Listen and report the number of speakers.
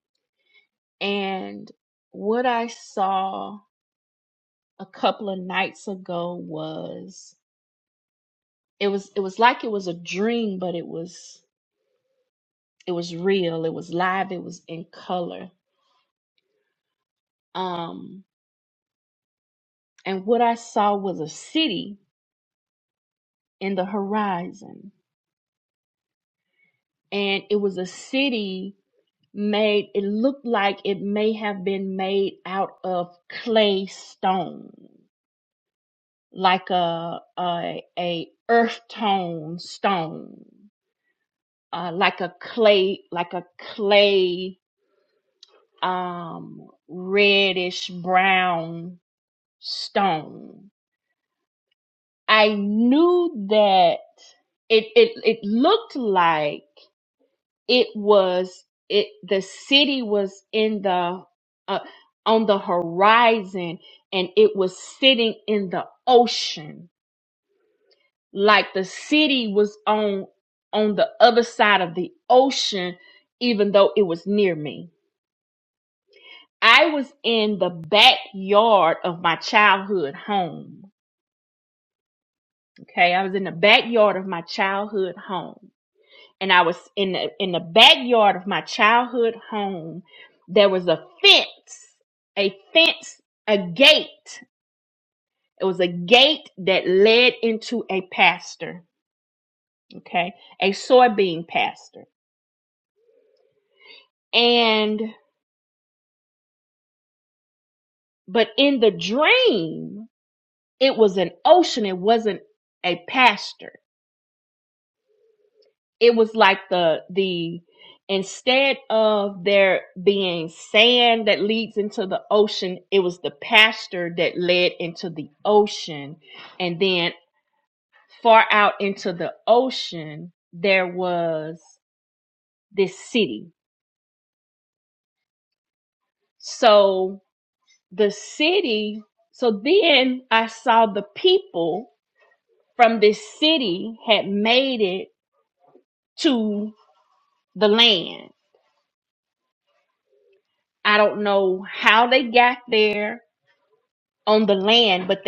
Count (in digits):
1